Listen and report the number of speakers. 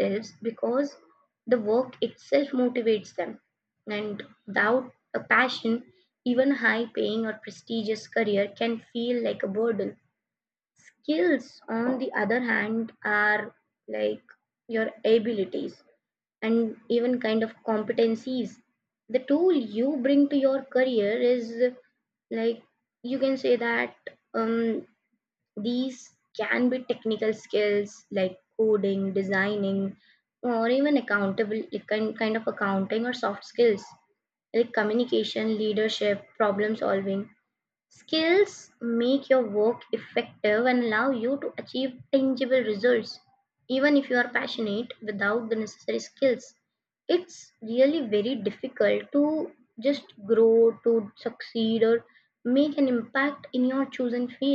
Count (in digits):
1